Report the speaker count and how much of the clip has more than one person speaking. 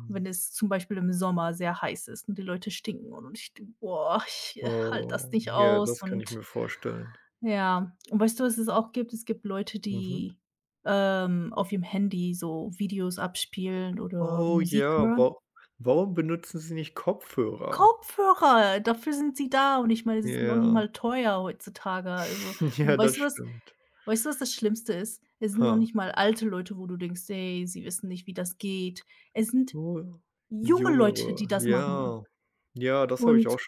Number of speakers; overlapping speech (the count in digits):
2, about 20%